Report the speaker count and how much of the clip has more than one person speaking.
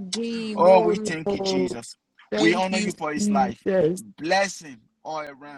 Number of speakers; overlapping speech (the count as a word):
two, about 43%